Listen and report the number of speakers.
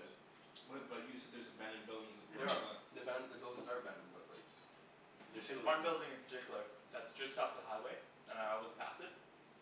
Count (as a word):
three